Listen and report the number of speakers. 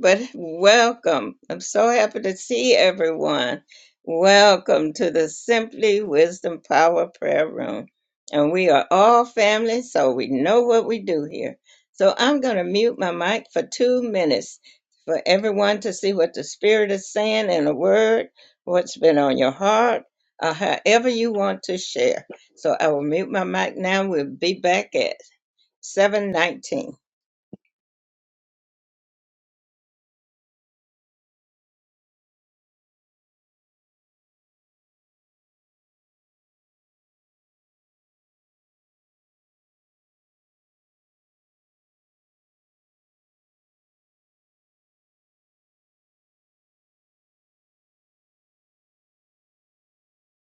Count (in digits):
1